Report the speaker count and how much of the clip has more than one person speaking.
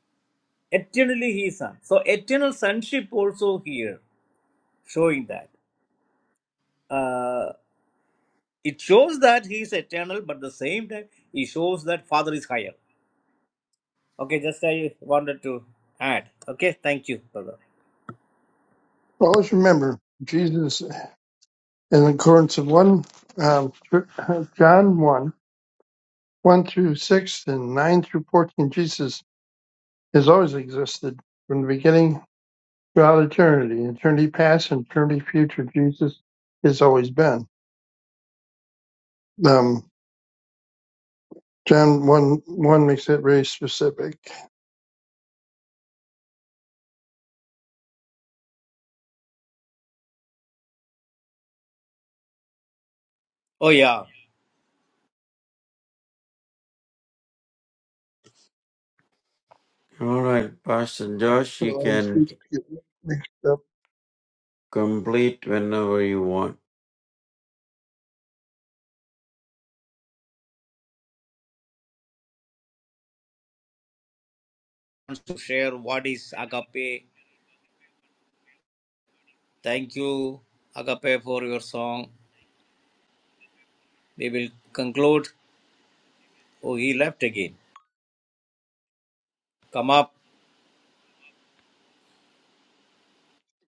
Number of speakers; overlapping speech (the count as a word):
three, under 1%